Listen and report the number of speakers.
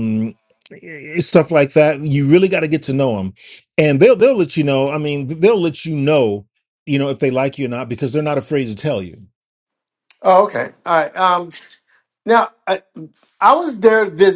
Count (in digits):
2